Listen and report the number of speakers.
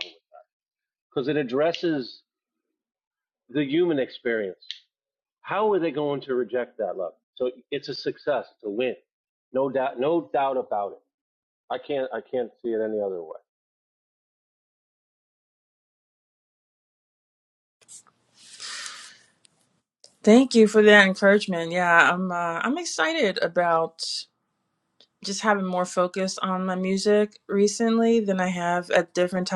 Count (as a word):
two